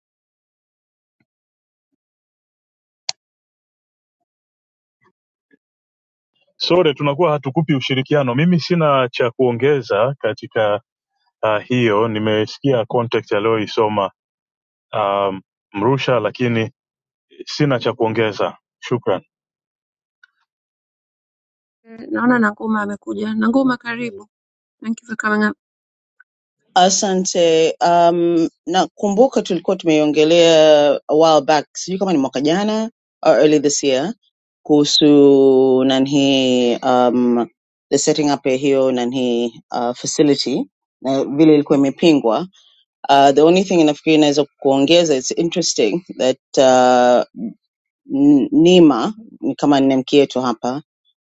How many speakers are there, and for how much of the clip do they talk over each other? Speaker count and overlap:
three, no overlap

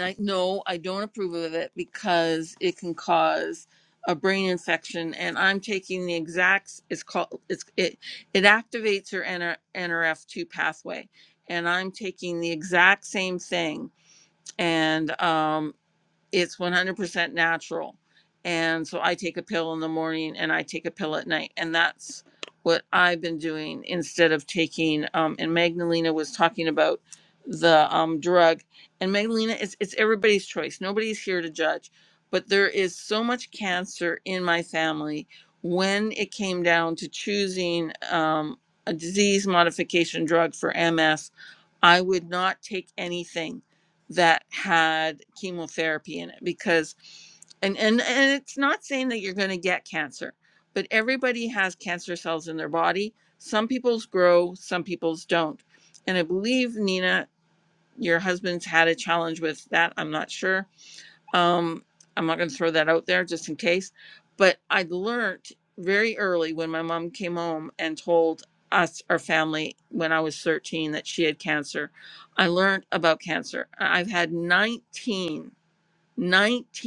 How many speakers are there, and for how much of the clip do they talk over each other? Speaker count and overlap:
one, no overlap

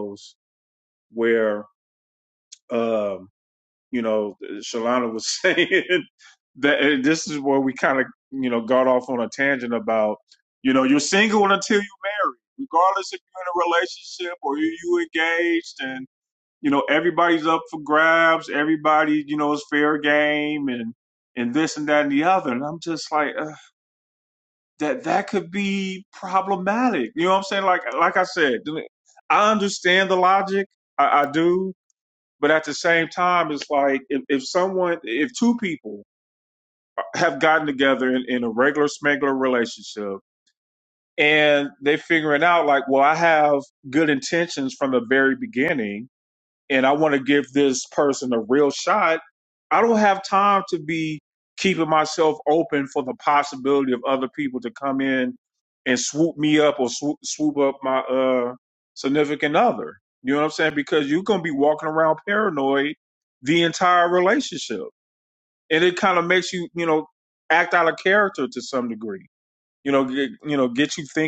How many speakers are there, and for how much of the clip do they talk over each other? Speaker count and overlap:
one, no overlap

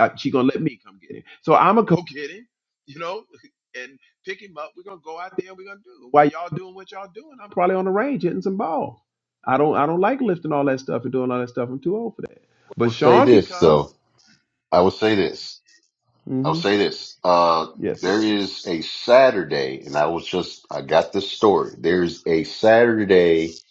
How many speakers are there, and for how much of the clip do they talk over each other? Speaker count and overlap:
two, about 5%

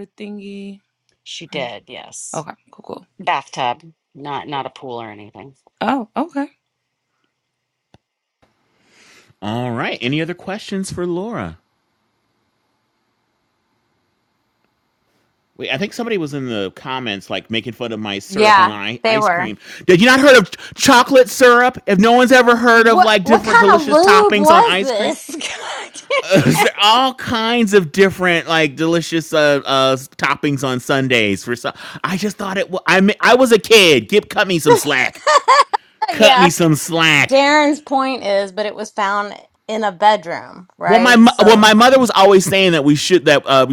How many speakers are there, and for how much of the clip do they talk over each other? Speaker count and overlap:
four, about 12%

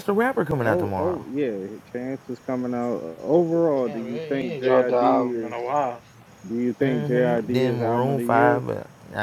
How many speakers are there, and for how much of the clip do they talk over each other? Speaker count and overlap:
three, about 43%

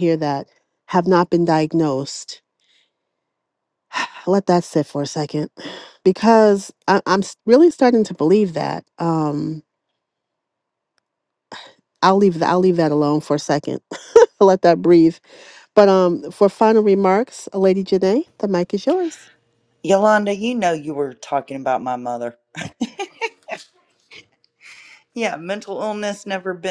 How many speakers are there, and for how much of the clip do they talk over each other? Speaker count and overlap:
two, no overlap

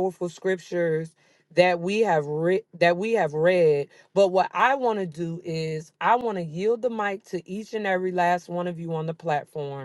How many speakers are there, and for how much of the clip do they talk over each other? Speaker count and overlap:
one, no overlap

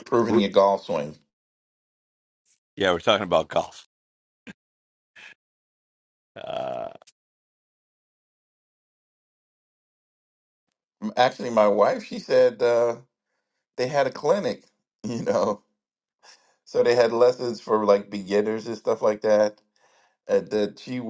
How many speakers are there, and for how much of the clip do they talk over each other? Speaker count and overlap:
two, about 1%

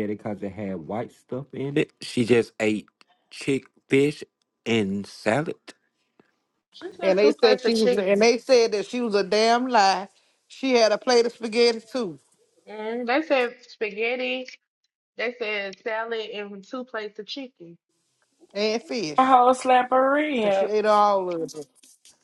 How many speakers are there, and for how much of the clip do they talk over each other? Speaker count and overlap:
four, about 7%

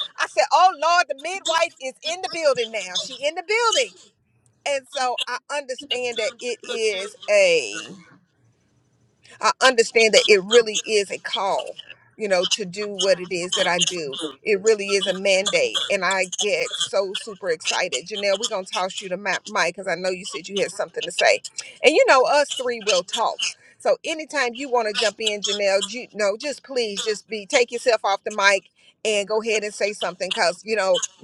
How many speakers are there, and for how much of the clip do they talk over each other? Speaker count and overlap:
one, no overlap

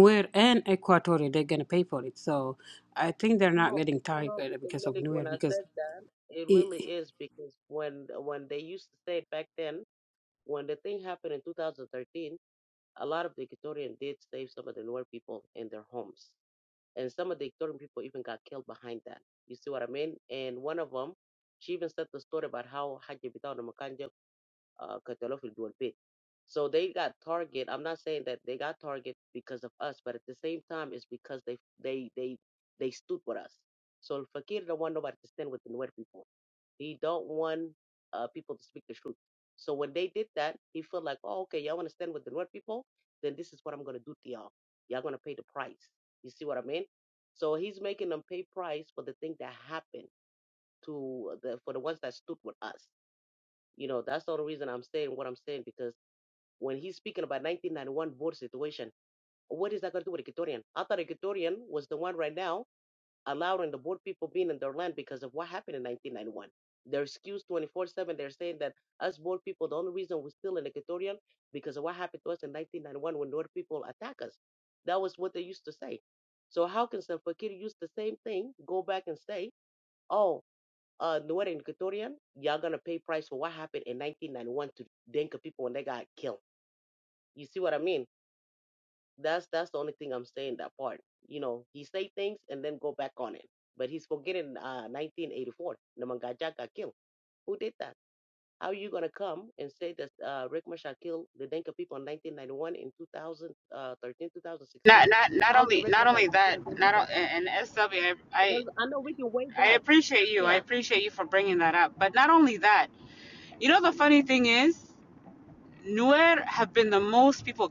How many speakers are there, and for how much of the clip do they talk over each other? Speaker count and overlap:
three, about 4%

